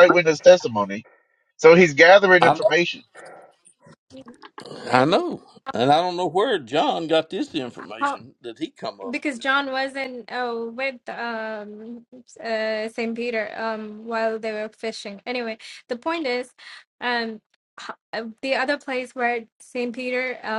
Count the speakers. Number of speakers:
3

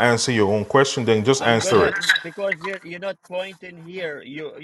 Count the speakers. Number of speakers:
2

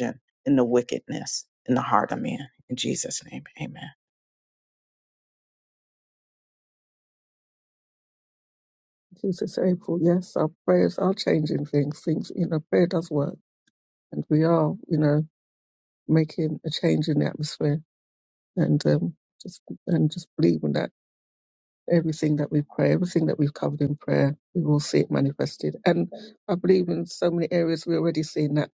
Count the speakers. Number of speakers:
2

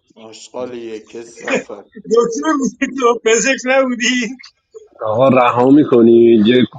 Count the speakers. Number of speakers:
3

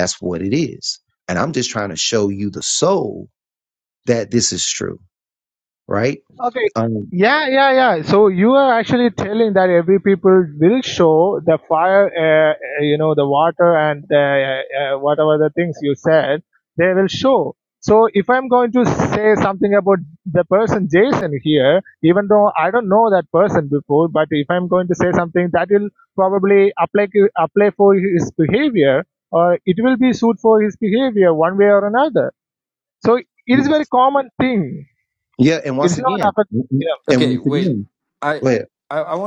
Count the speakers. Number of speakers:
3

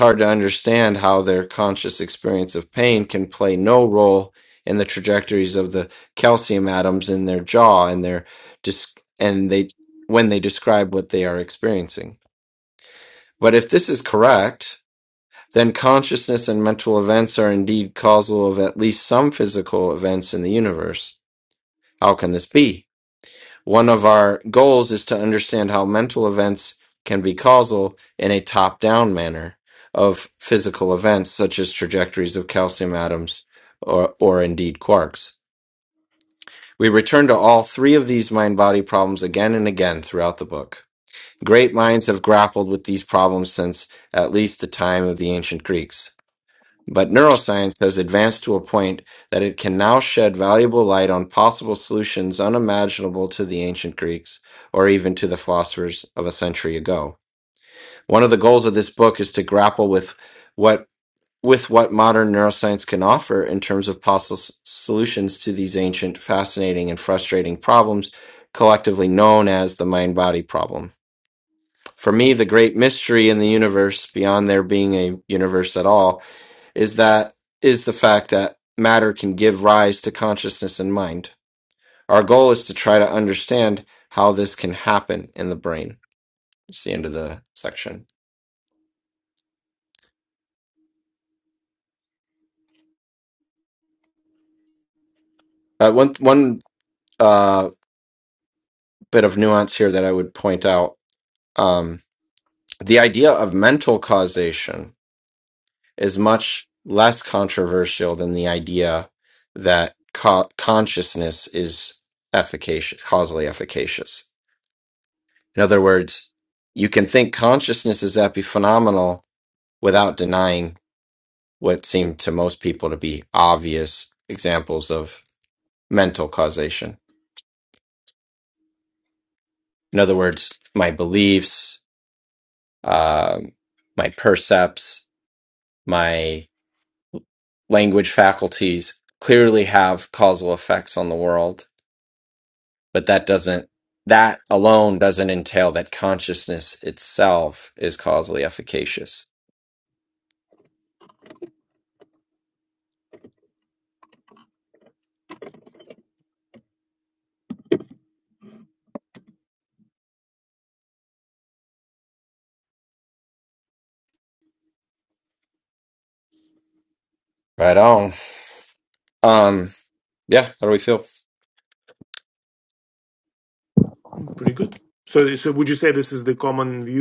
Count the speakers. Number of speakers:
2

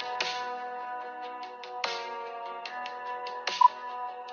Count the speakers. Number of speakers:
0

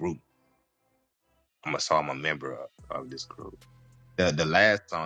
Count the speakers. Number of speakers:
1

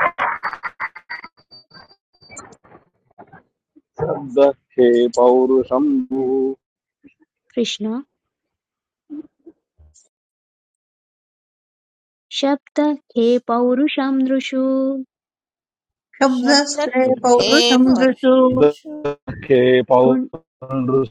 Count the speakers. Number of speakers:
4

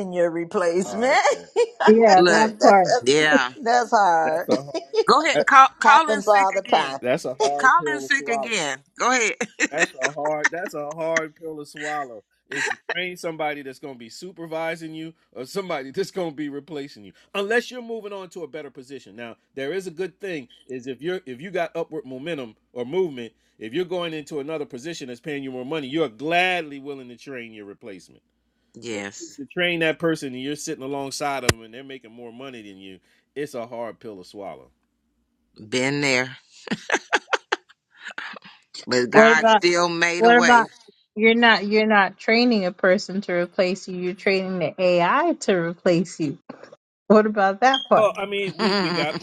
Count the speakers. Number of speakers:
4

